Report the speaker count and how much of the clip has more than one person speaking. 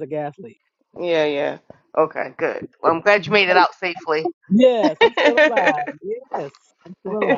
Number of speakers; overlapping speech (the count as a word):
two, no overlap